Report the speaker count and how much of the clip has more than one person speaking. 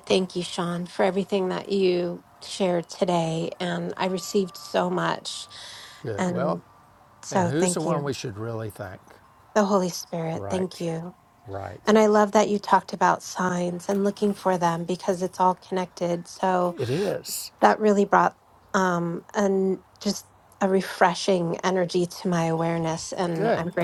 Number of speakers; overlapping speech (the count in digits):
2, about 7%